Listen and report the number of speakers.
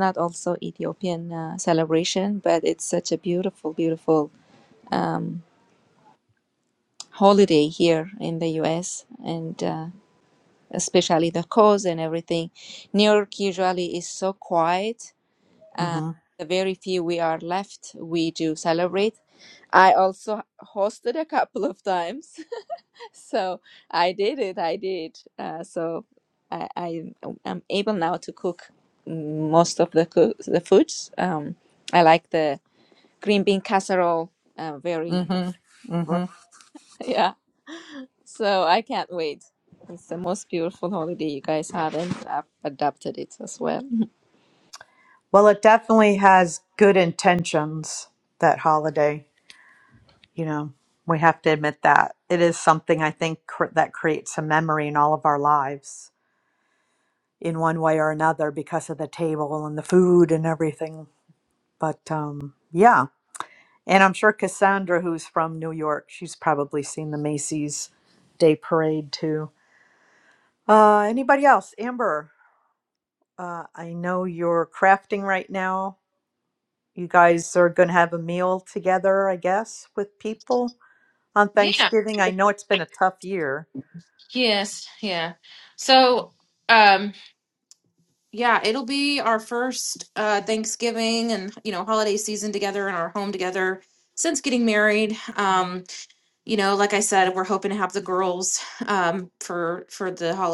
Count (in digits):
3